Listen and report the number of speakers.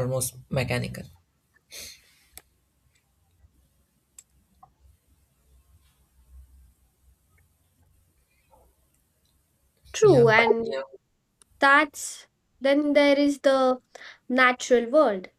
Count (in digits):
2